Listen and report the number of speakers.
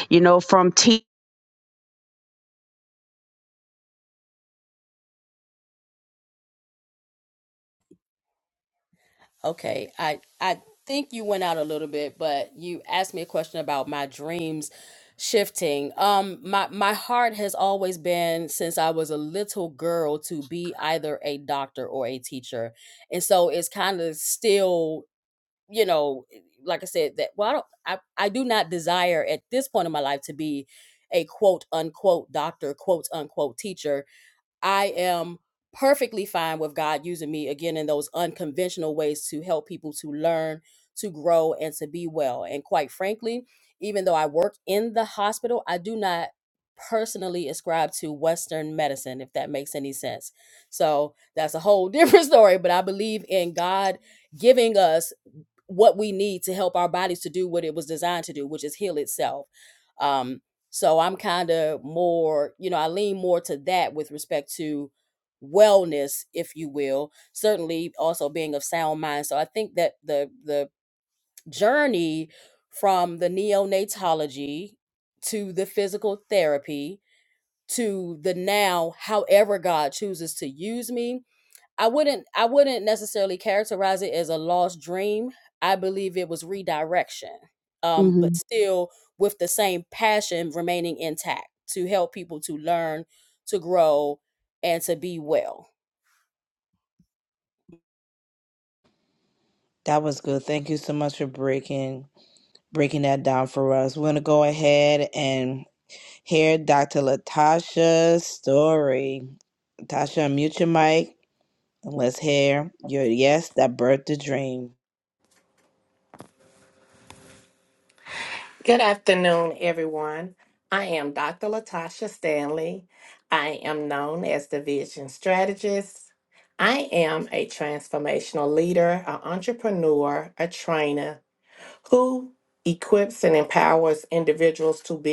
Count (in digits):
4